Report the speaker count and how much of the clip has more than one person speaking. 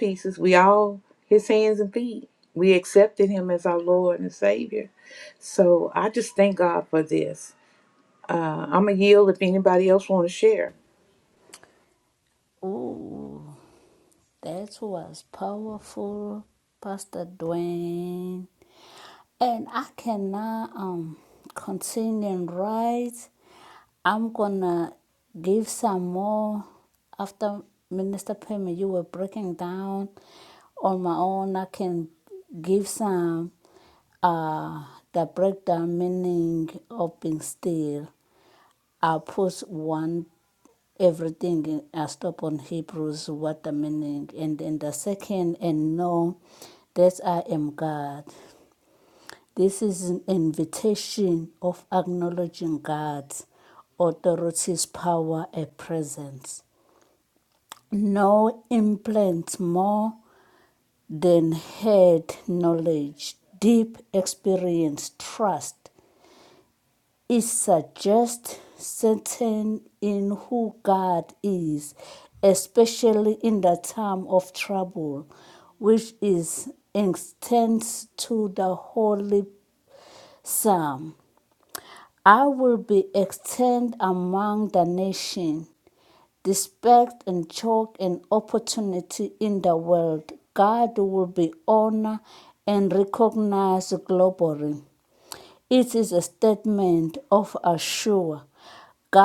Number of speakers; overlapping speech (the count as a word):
two, no overlap